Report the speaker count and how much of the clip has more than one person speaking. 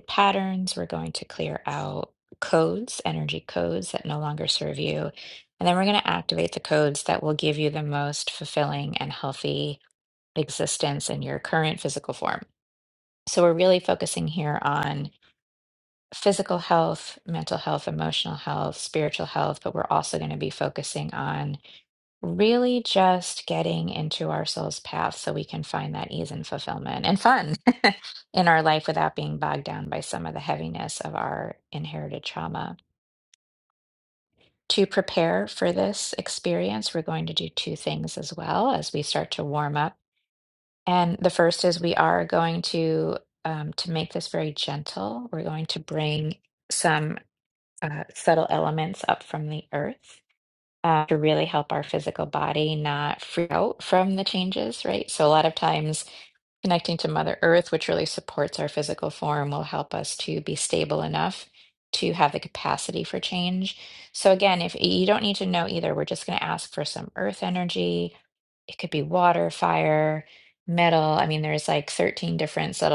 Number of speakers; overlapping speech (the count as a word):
one, no overlap